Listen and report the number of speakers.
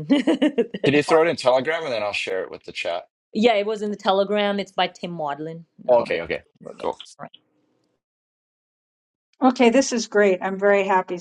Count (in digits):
3